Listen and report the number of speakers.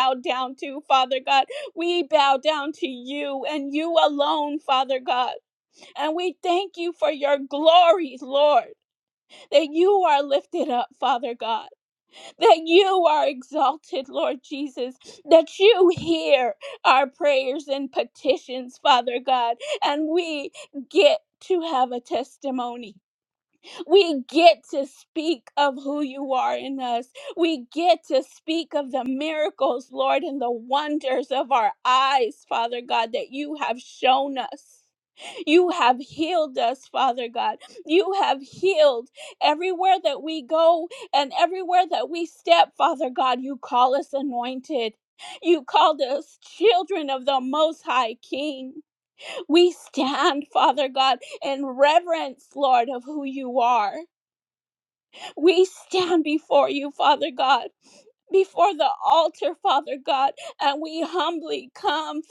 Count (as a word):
one